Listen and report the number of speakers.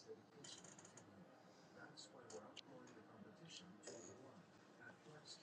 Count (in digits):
0